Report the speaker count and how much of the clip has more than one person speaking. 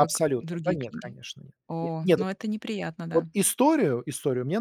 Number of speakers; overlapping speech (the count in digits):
2, about 30%